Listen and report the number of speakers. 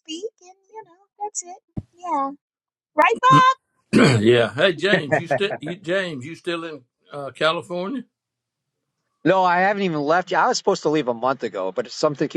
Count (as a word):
three